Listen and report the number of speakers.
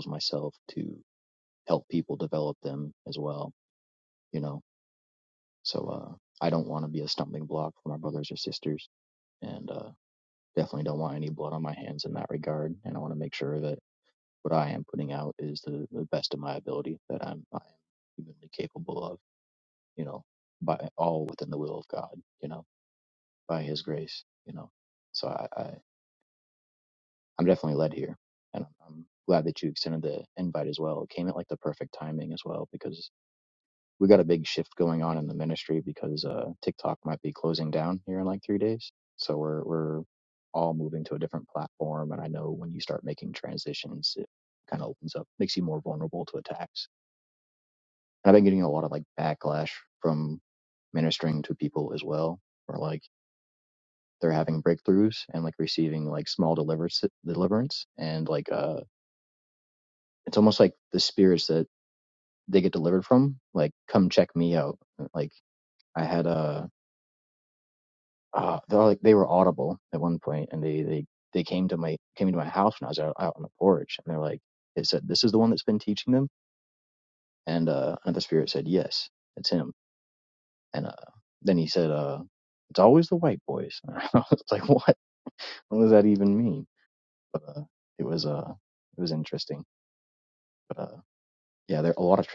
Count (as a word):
one